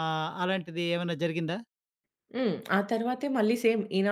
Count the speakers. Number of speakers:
2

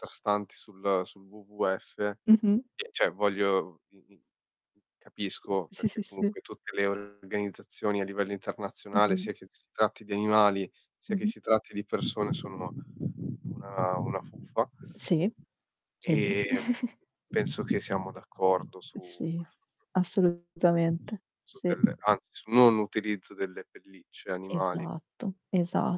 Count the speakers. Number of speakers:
2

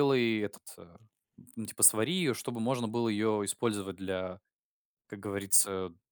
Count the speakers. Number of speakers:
1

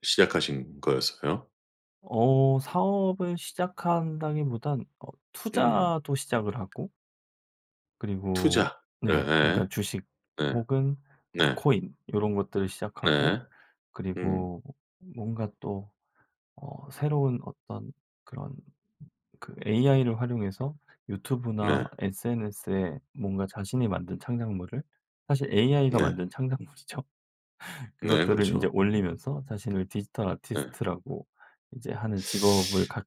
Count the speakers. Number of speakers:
2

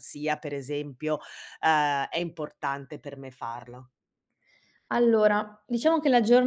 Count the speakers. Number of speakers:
2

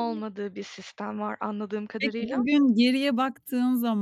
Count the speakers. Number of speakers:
2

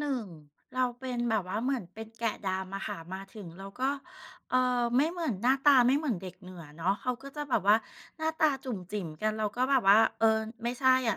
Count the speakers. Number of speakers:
1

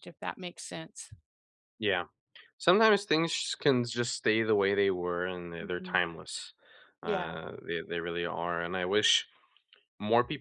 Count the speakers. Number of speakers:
2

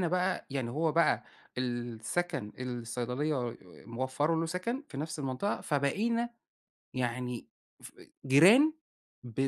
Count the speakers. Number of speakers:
1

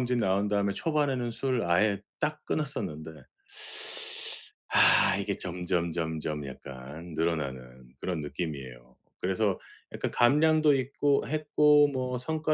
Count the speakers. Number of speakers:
1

